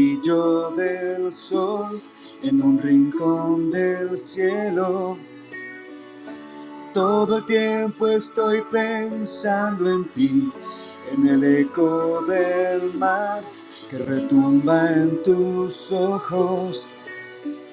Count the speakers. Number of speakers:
1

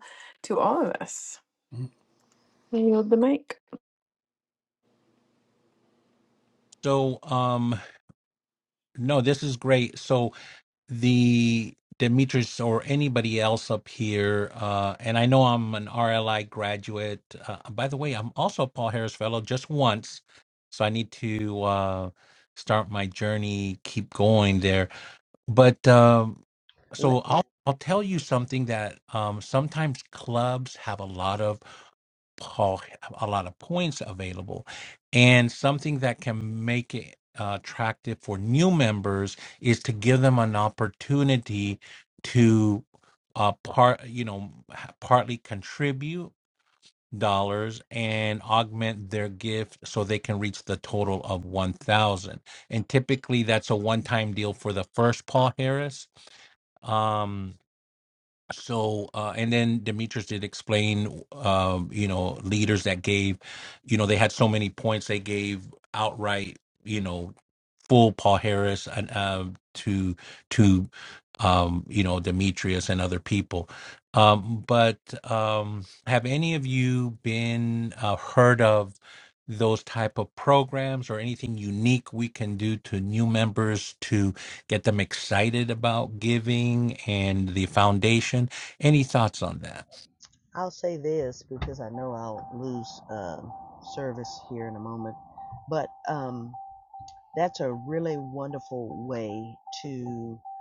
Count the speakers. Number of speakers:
3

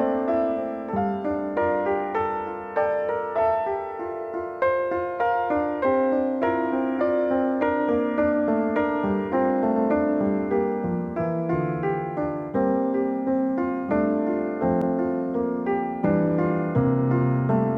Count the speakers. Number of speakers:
0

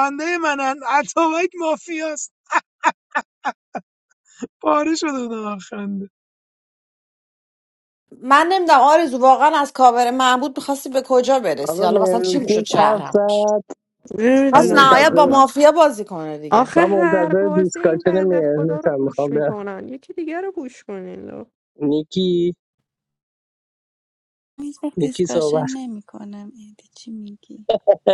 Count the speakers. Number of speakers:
5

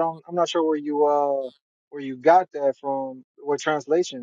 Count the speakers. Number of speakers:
1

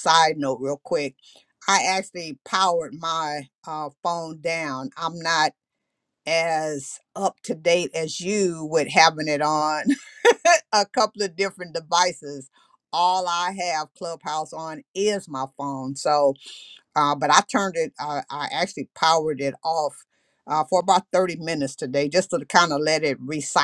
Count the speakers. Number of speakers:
1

